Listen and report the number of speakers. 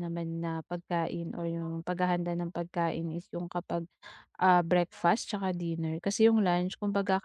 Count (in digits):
1